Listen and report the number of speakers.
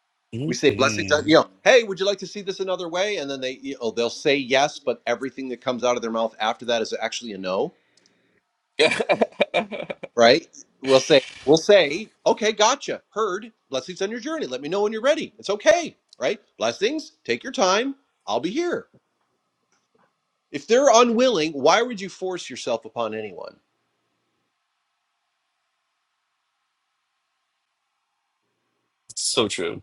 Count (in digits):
2